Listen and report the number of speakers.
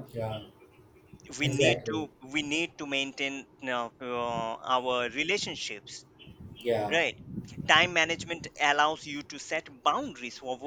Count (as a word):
two